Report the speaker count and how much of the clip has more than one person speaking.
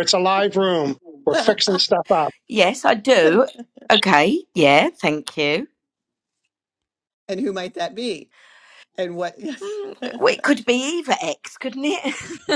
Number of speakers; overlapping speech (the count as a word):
three, about 1%